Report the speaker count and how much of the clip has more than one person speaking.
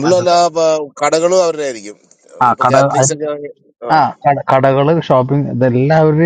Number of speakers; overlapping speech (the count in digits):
2, about 19%